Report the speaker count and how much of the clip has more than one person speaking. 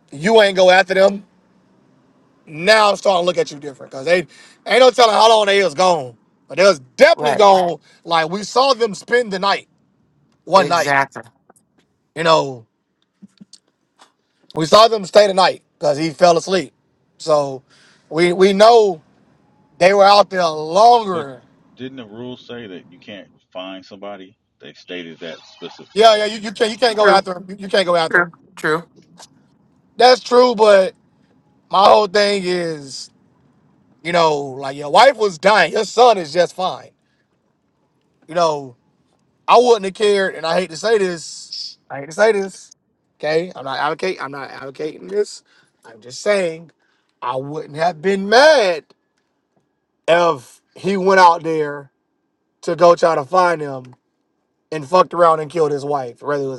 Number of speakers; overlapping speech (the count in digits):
3, about 2%